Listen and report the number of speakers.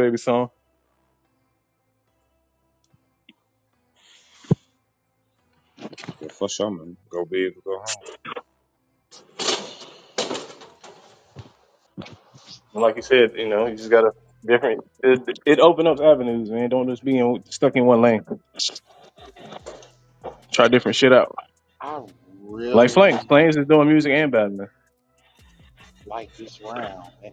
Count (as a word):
three